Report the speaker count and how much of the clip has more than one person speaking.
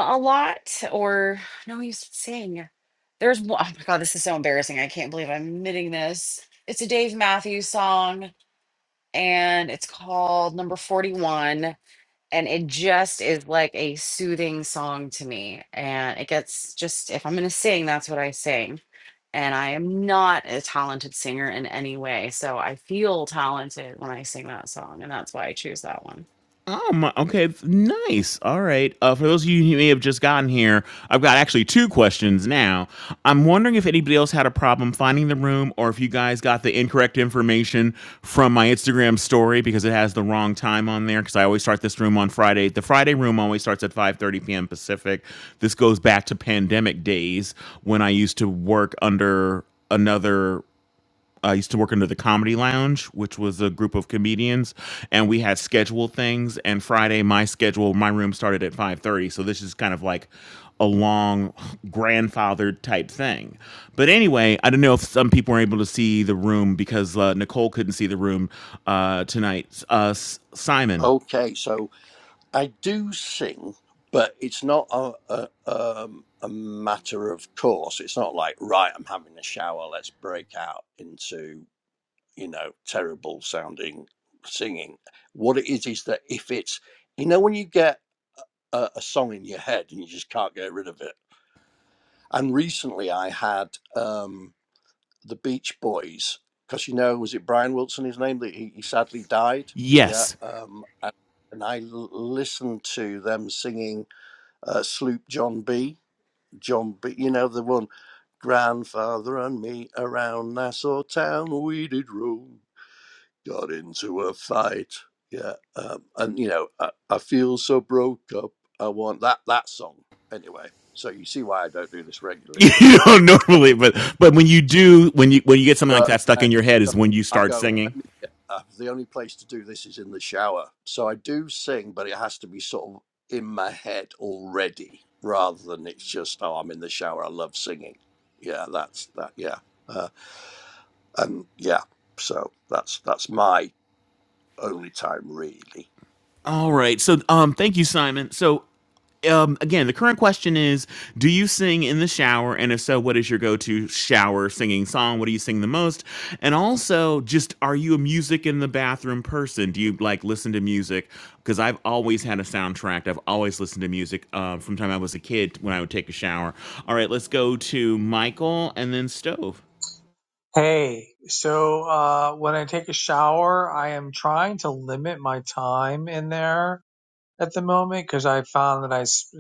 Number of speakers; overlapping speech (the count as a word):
four, about 1%